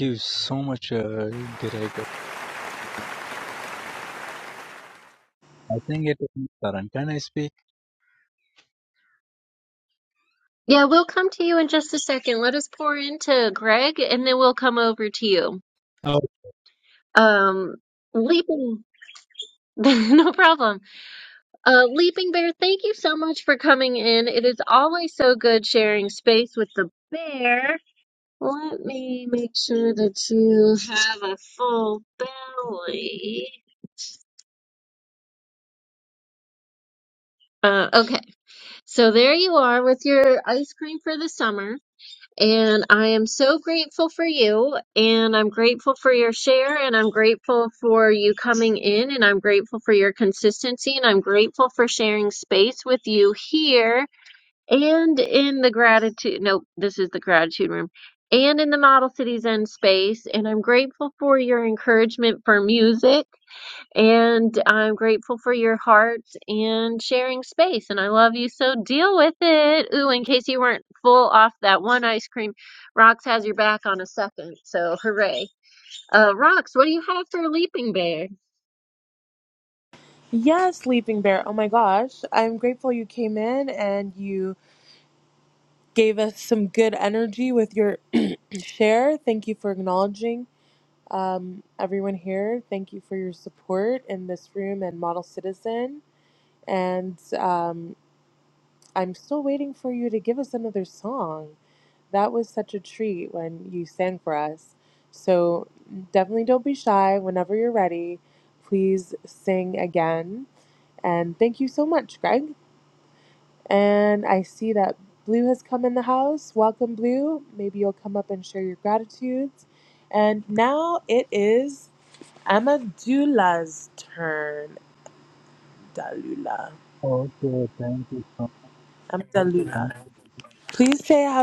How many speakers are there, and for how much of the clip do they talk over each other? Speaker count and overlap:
3, under 1%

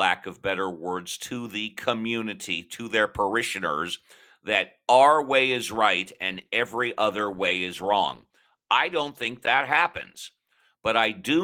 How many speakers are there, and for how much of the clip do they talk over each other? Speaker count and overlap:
1, no overlap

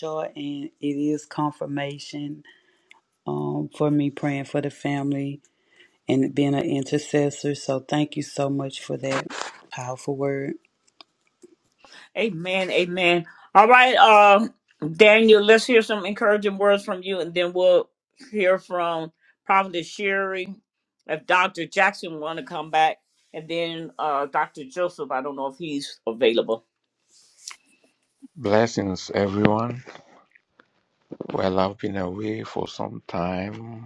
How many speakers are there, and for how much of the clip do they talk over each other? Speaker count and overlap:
3, no overlap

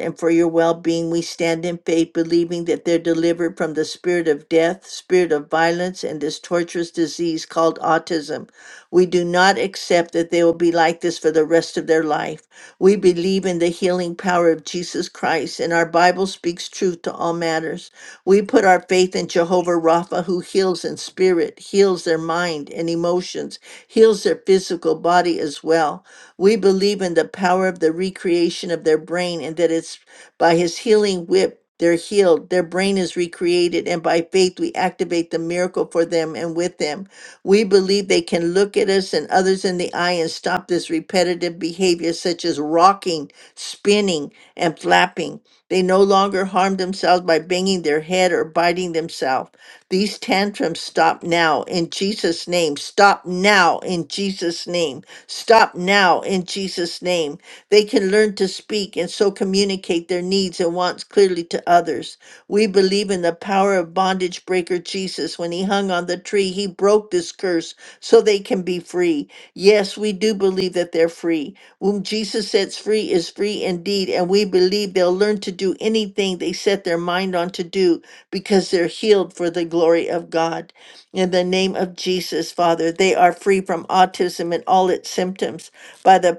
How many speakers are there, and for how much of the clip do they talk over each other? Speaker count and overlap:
1, no overlap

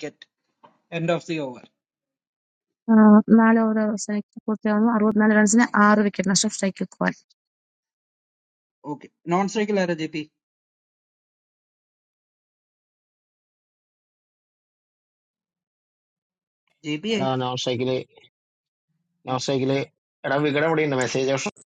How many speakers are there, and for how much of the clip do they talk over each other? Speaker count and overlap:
3, about 1%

